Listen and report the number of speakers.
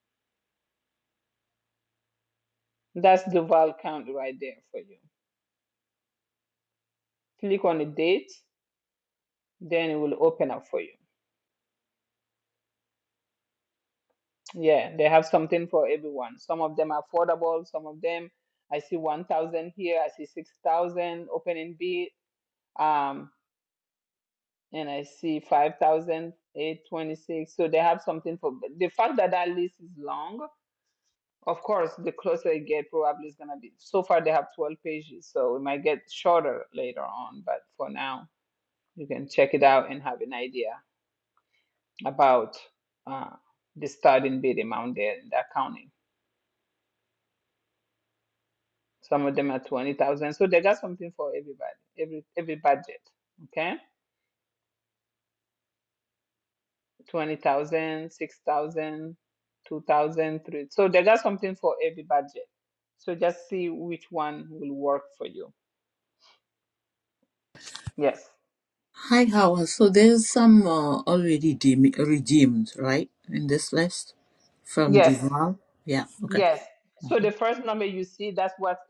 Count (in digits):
2